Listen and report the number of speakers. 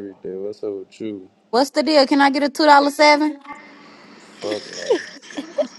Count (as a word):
two